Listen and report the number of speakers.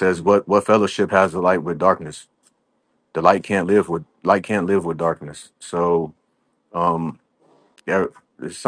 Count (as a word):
one